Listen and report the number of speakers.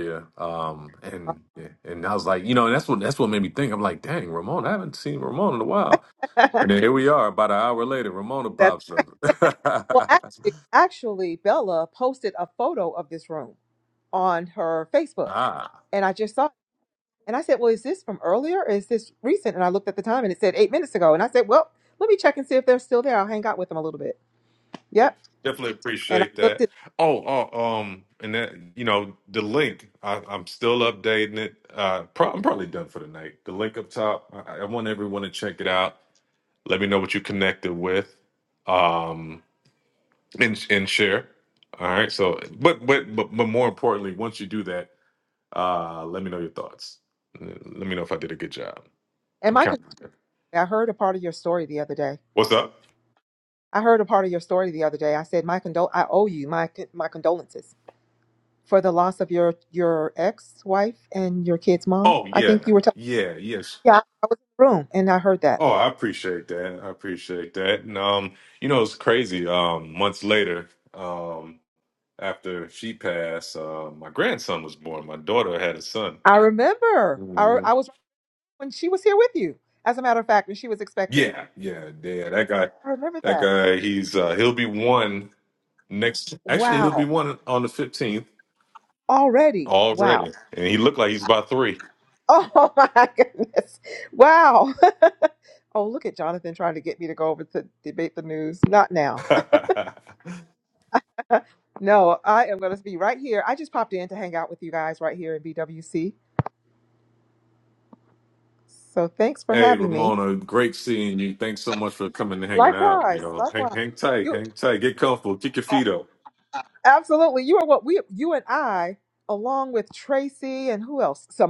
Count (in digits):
2